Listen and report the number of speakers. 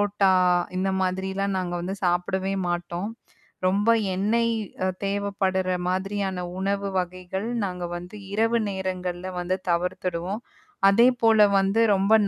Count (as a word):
one